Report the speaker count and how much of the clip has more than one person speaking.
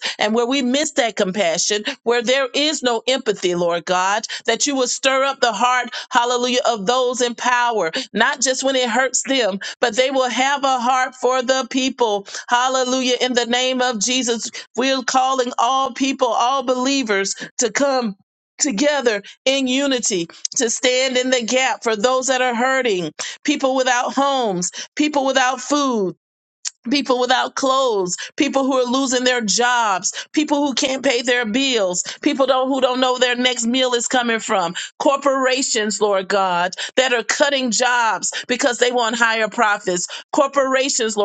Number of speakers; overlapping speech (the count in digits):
1, no overlap